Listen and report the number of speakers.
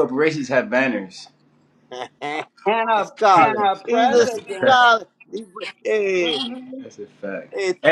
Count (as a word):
three